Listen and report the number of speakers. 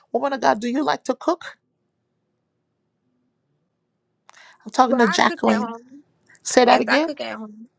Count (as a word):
two